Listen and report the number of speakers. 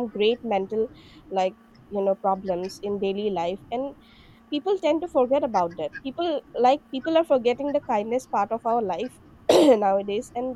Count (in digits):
1